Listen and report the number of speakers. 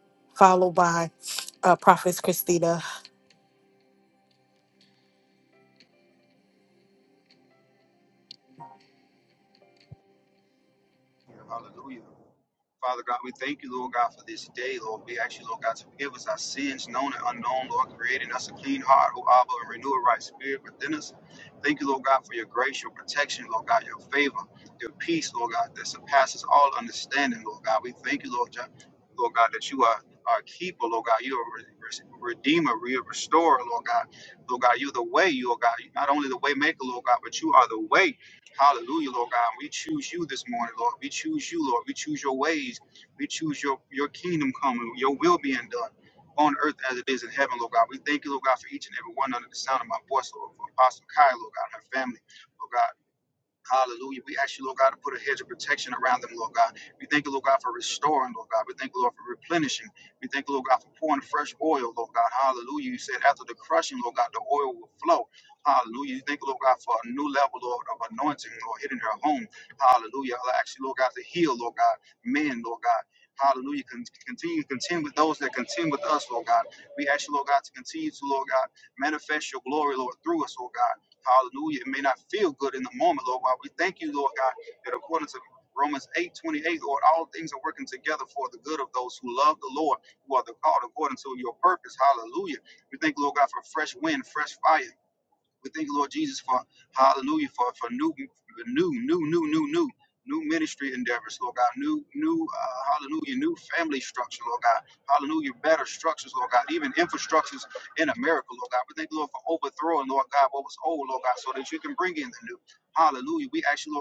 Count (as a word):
two